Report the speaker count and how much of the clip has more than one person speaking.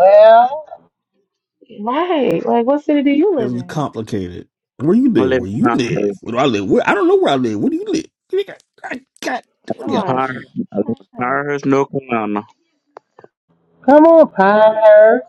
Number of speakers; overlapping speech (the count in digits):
4, about 16%